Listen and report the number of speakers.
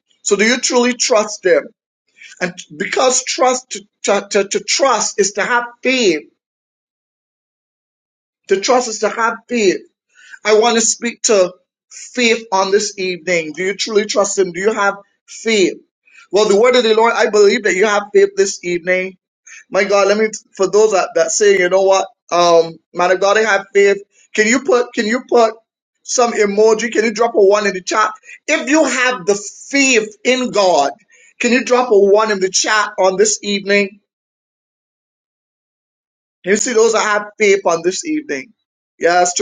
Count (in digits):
1